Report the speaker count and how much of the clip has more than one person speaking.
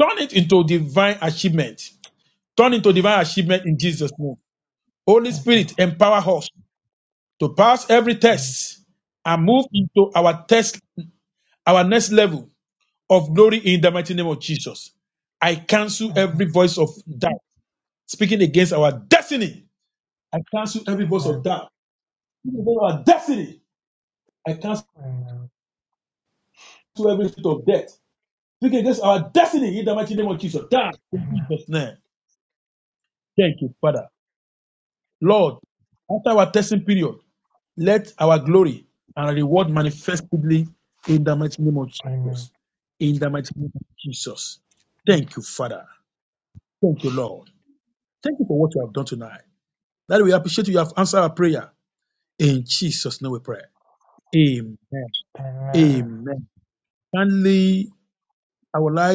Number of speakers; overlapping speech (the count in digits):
2, about 2%